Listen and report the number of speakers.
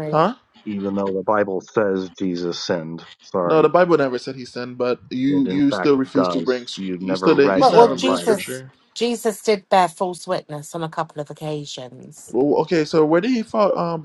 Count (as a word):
three